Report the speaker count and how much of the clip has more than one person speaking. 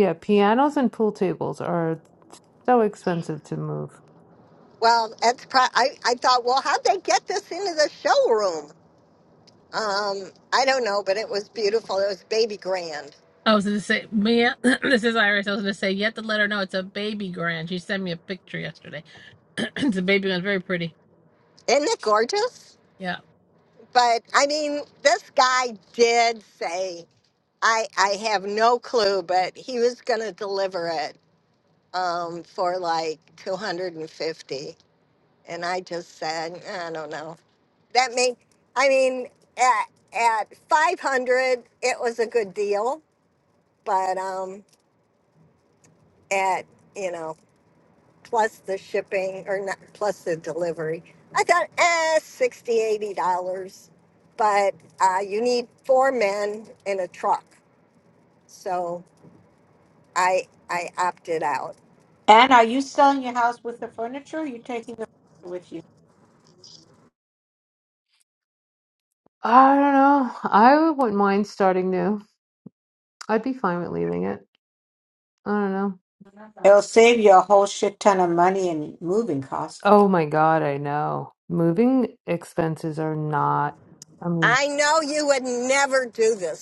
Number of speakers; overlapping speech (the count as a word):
four, under 1%